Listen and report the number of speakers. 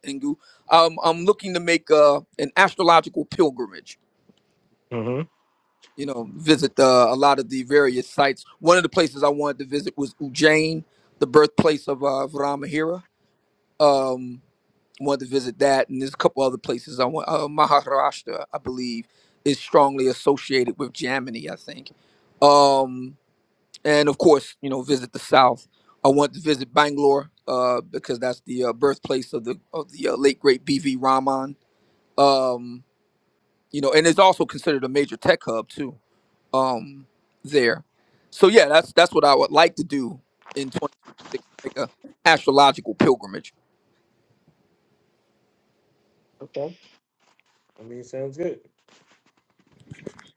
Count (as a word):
two